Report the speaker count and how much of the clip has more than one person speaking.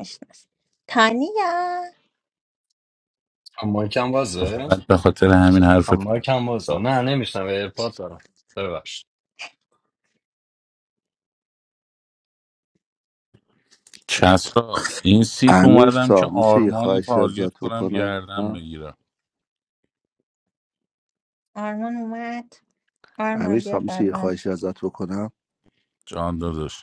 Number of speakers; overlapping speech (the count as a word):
four, about 16%